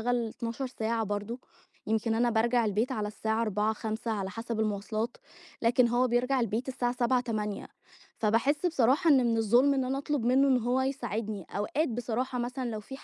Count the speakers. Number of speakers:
1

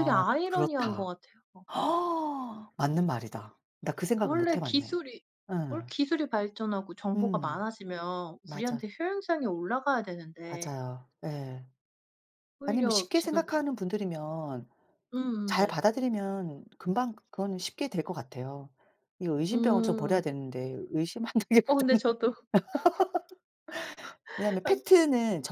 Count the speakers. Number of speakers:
2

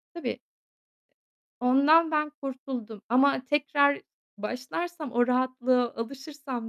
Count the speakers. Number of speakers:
1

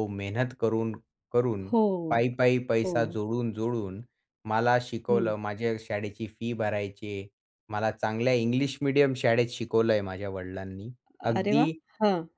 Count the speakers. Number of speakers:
2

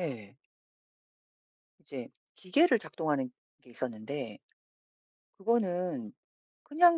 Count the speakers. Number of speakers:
1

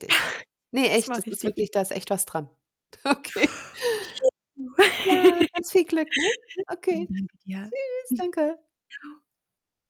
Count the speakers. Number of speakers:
2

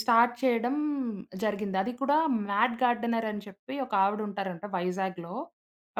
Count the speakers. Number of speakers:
1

